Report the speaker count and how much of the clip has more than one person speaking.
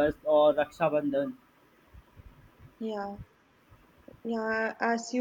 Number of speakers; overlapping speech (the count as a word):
two, no overlap